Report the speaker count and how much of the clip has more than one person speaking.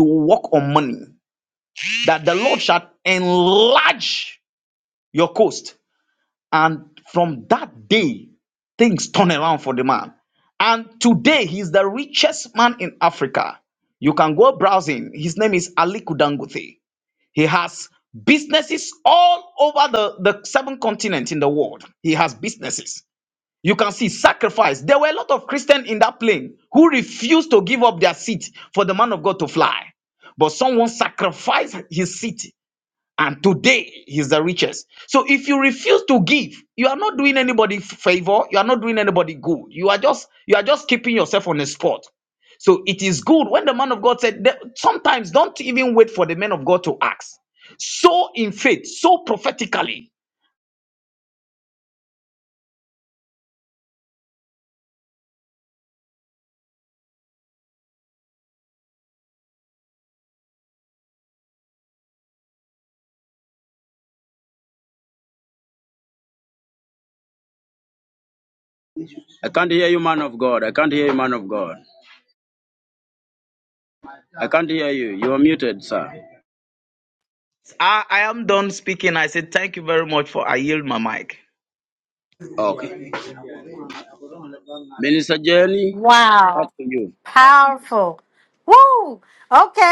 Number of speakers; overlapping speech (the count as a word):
three, under 1%